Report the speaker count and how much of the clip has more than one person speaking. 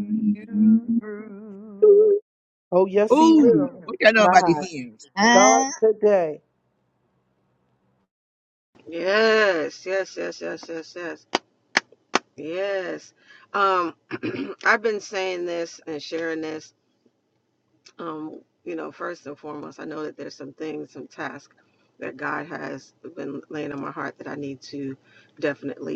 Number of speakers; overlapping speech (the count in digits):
3, about 9%